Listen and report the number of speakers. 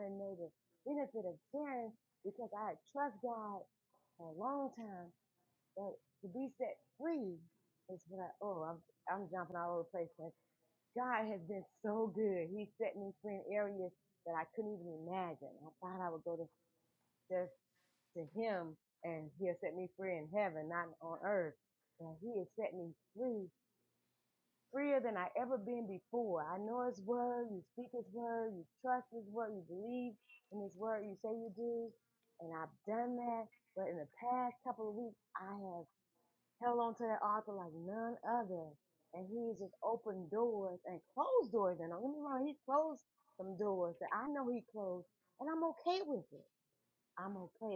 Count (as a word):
one